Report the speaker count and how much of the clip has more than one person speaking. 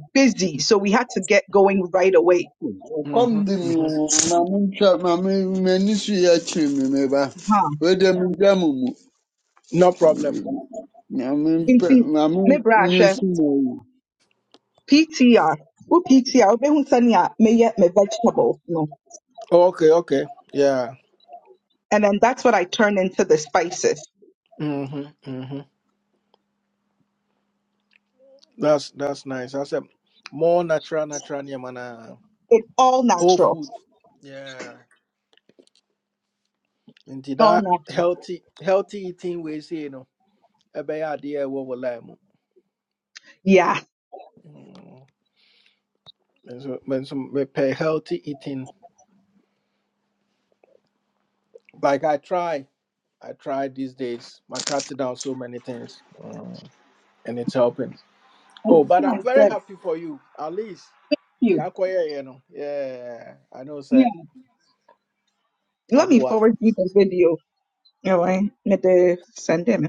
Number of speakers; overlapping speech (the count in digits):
3, about 4%